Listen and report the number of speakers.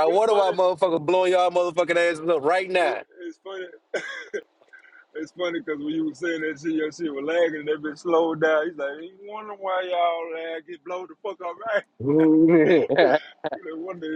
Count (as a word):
two